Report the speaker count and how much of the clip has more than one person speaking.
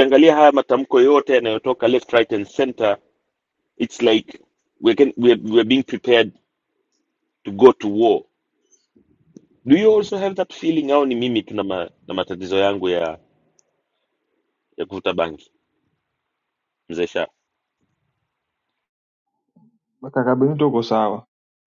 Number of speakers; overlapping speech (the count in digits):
2, no overlap